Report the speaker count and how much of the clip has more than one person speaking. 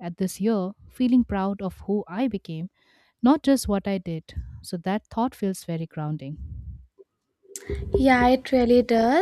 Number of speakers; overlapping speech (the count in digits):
2, no overlap